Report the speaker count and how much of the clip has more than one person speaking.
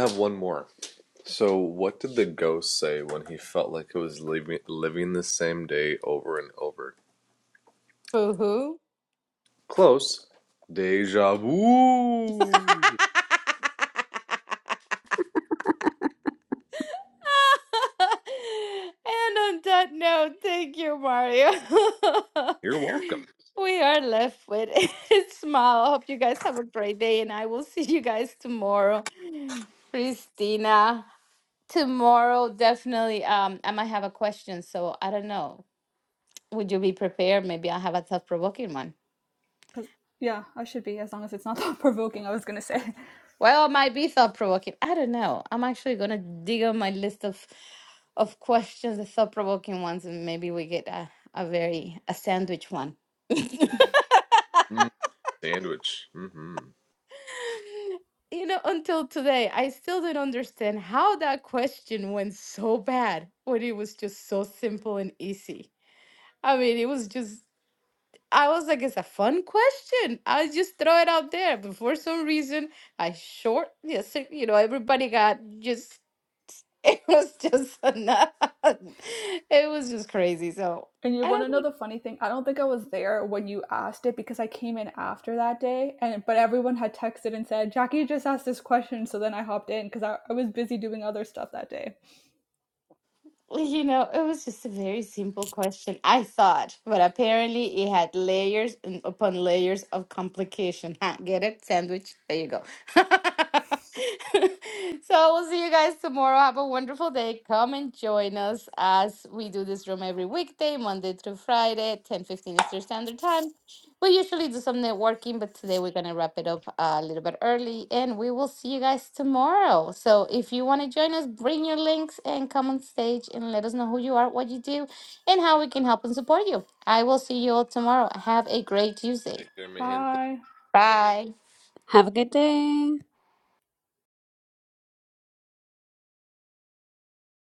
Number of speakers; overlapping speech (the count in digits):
4, under 1%